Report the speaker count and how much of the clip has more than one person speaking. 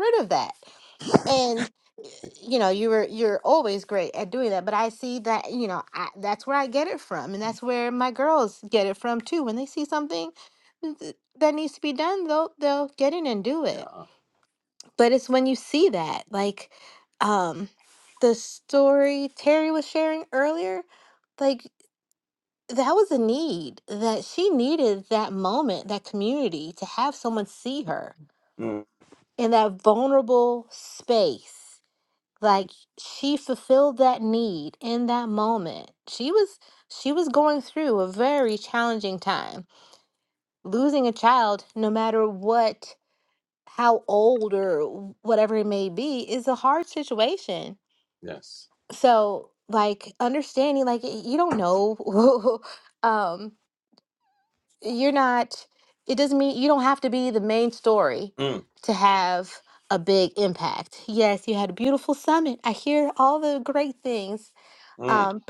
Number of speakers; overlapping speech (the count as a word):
two, about 1%